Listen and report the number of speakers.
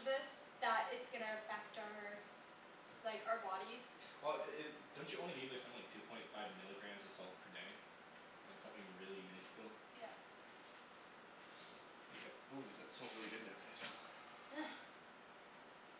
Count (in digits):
2